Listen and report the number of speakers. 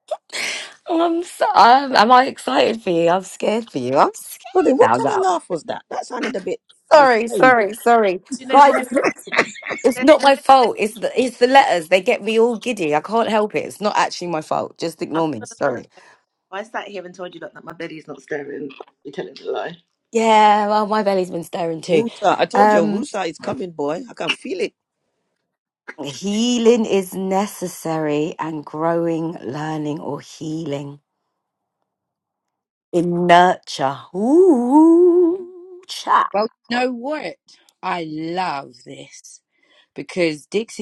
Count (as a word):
four